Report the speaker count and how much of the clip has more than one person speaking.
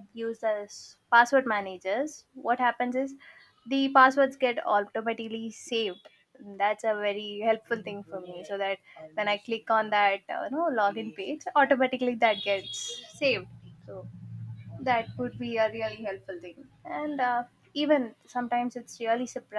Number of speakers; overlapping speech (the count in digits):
1, no overlap